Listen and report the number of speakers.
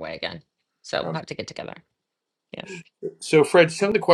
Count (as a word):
two